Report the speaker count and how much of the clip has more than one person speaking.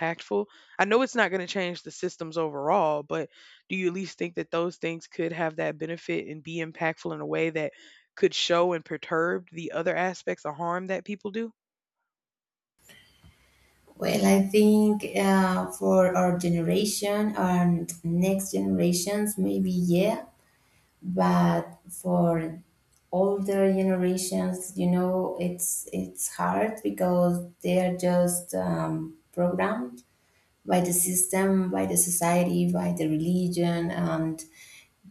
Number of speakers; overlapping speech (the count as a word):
two, no overlap